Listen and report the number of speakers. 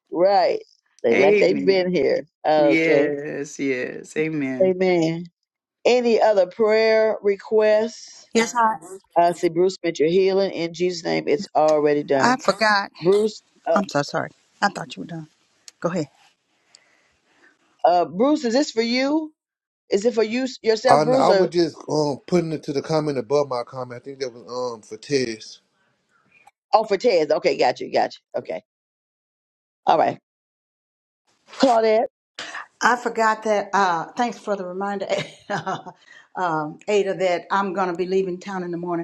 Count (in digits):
4